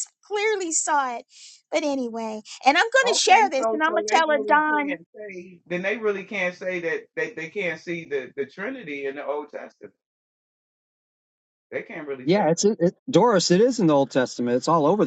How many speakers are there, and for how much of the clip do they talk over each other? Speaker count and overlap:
3, about 15%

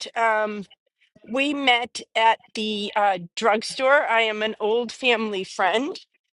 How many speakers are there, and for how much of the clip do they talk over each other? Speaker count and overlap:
1, no overlap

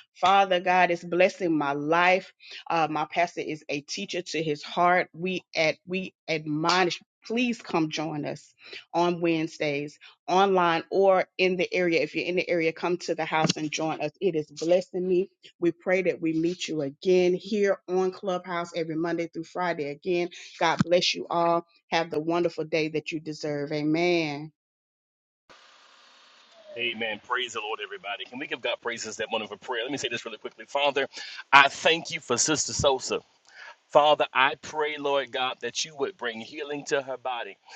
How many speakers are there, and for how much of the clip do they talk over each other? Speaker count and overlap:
2, no overlap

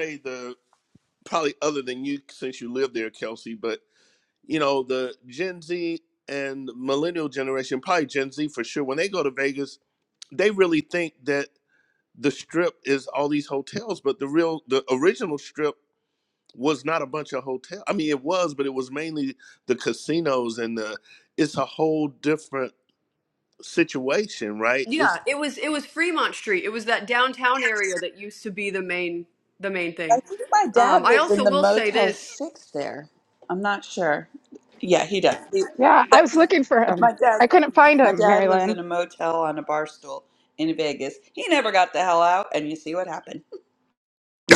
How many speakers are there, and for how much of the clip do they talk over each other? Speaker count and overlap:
4, about 7%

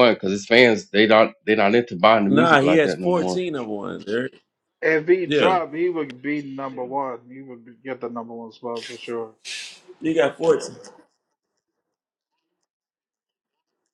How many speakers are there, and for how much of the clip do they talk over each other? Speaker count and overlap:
3, about 10%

